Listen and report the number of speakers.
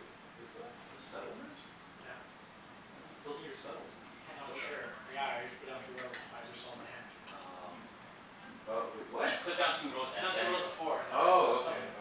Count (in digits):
3